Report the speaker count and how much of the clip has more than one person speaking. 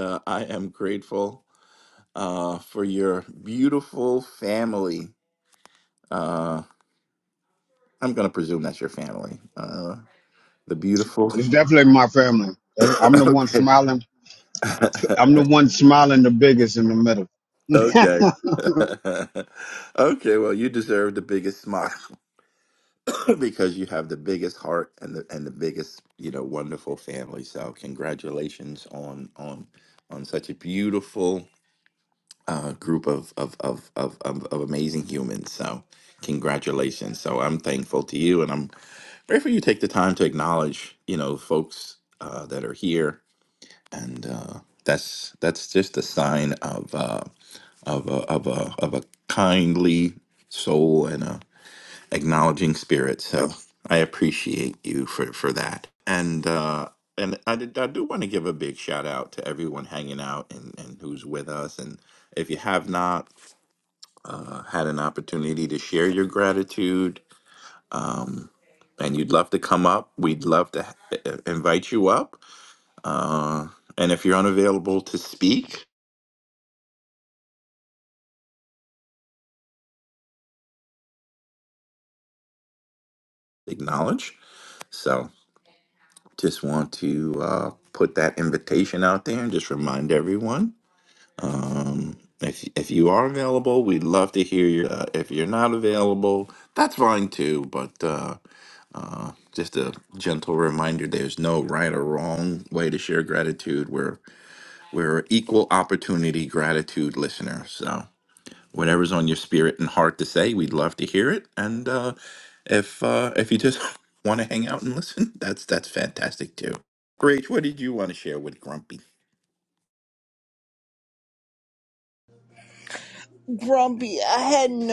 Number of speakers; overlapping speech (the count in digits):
3, under 1%